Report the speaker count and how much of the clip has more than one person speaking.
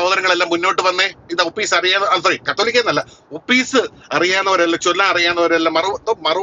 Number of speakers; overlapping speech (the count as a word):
one, no overlap